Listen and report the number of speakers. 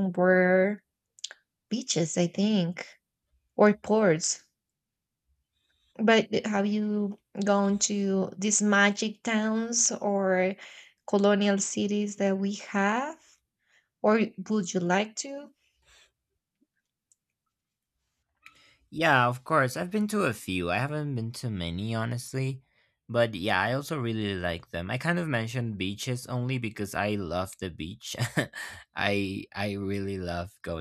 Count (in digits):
2